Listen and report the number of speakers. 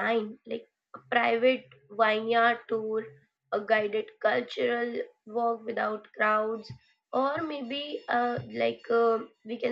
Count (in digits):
1